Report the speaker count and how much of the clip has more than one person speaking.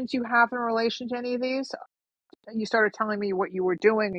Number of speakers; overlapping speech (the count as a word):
one, no overlap